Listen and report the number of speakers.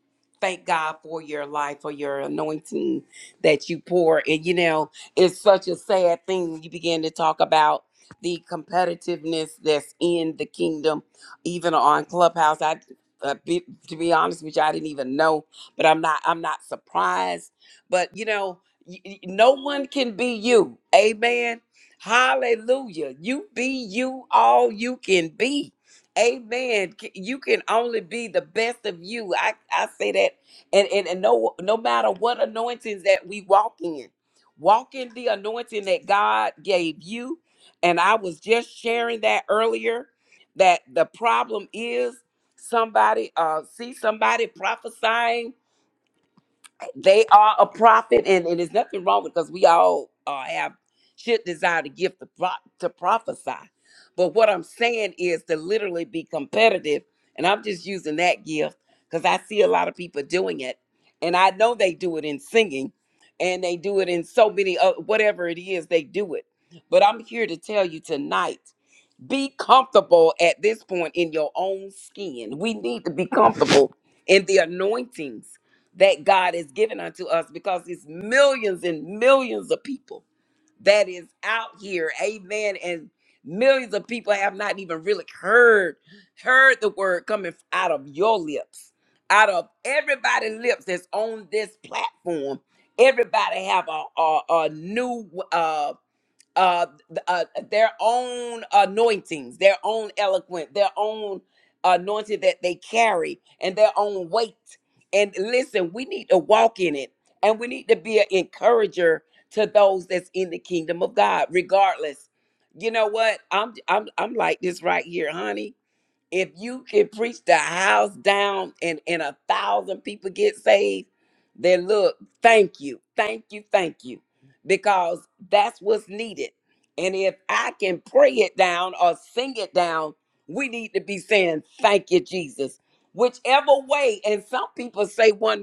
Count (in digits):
1